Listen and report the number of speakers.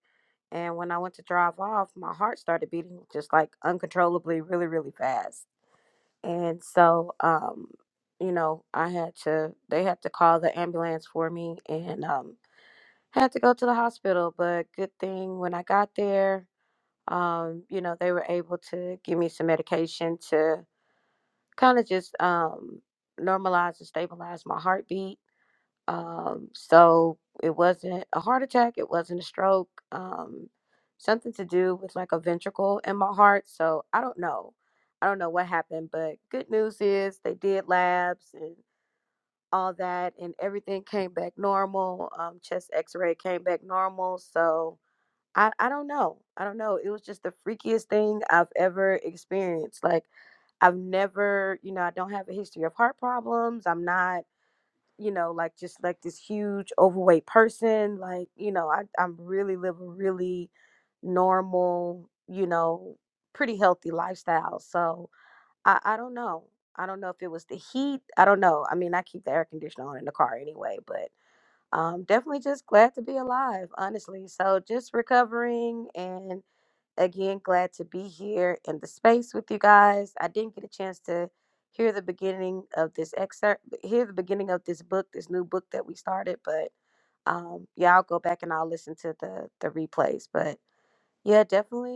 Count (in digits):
1